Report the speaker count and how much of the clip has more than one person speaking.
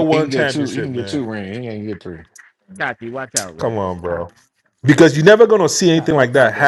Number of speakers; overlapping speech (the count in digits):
3, about 27%